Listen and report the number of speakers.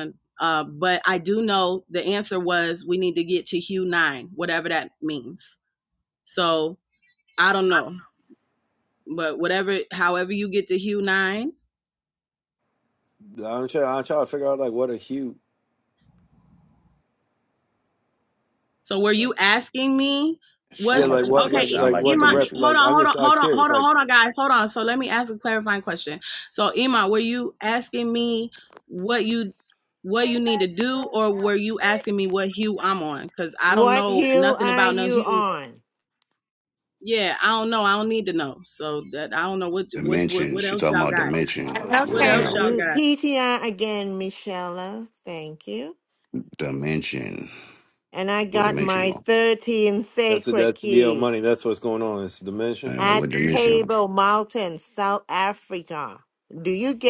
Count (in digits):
4